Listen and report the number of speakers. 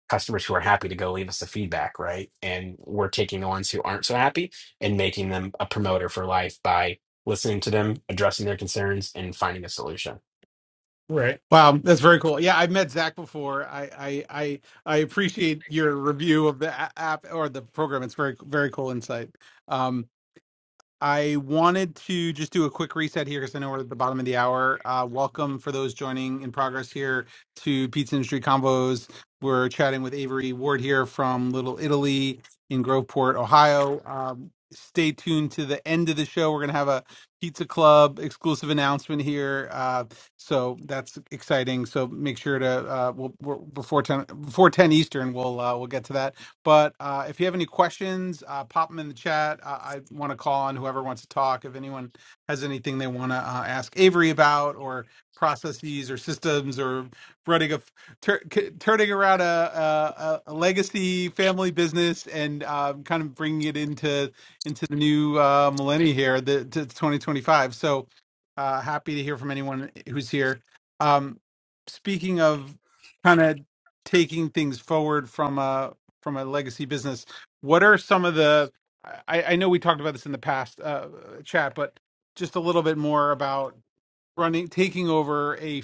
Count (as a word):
two